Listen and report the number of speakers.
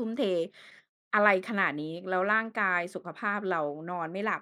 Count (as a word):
one